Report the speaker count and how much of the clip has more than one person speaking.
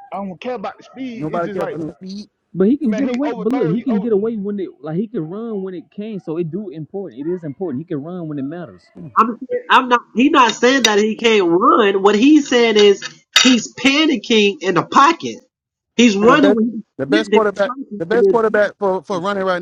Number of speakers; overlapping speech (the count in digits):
4, about 20%